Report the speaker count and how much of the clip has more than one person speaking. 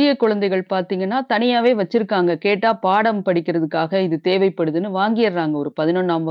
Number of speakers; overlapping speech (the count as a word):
one, no overlap